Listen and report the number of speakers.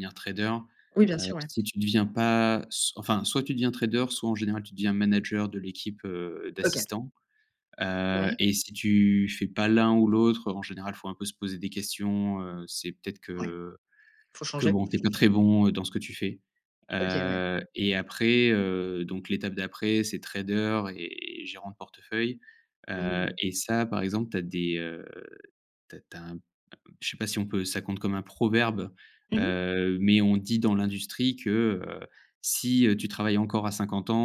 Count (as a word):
two